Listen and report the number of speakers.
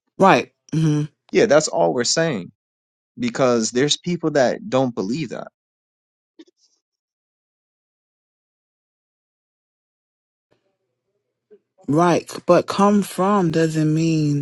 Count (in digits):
2